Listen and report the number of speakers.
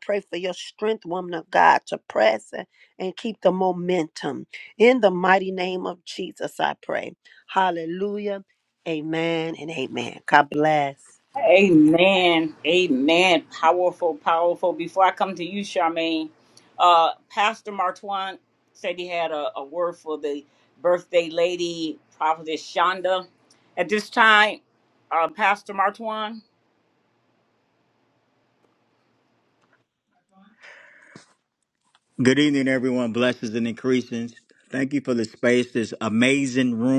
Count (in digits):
3